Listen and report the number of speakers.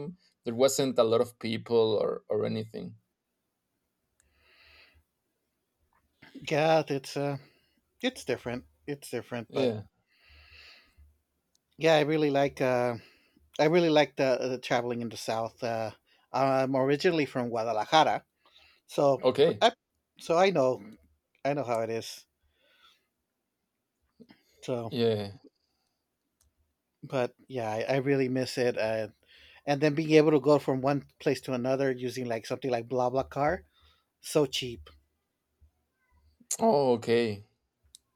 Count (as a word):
two